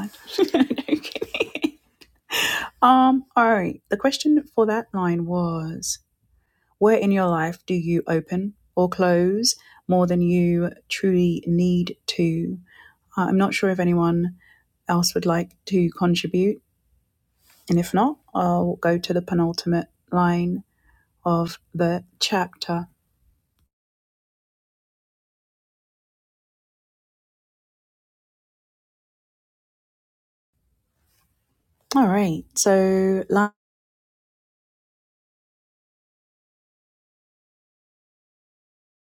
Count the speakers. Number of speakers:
1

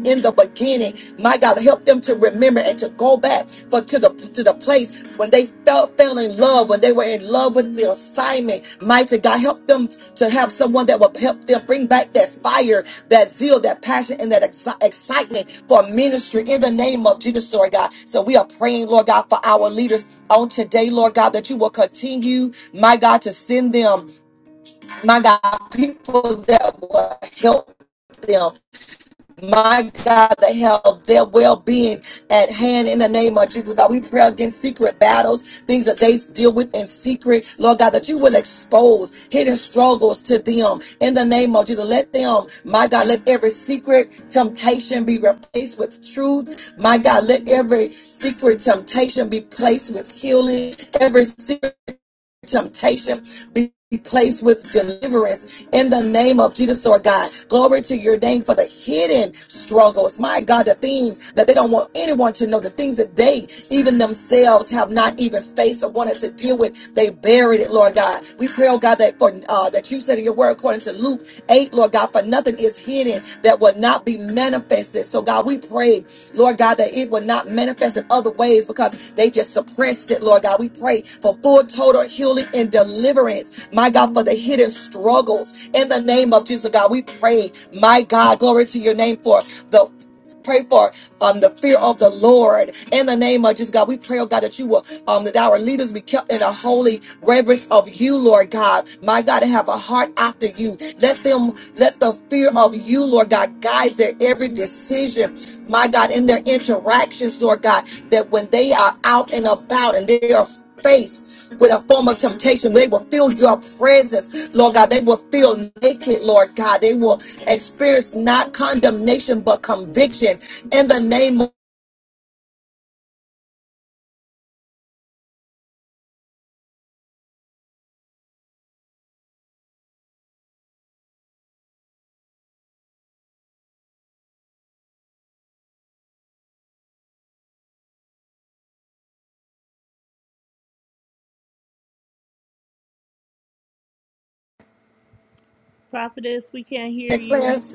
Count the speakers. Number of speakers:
2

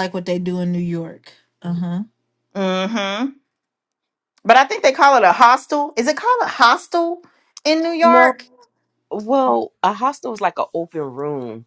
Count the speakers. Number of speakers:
3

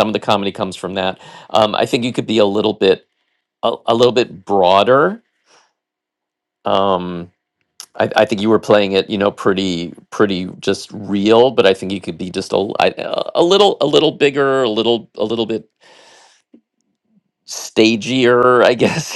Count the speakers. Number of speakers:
1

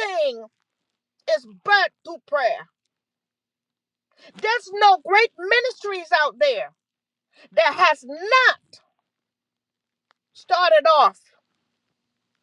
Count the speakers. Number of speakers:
1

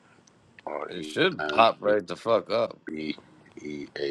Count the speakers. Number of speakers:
2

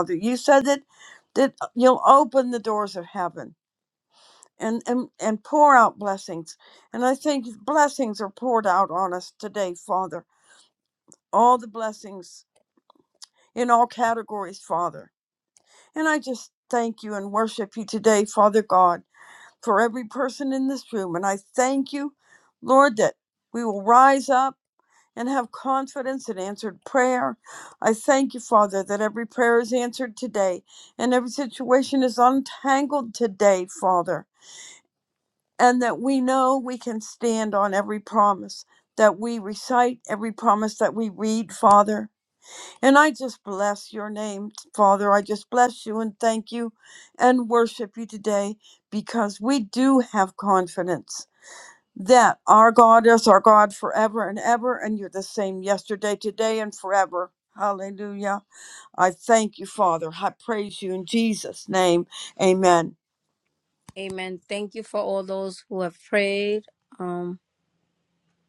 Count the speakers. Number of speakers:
2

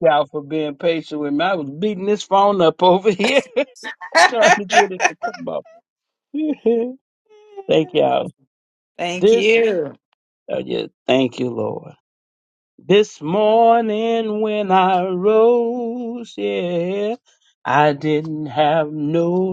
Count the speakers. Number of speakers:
2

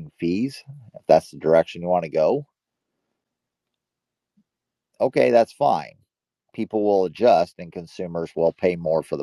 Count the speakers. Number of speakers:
1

